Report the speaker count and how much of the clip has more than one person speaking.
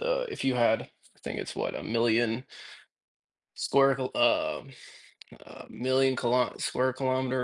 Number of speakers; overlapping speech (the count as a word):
one, no overlap